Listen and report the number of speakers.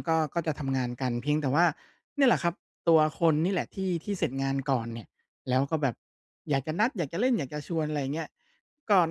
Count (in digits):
1